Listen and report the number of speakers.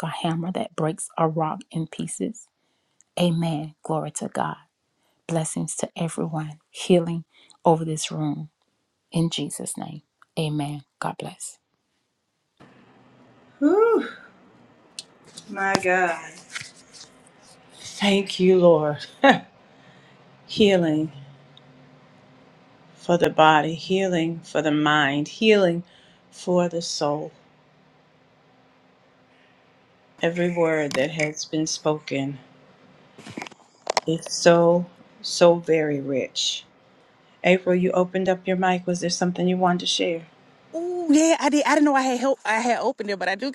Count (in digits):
3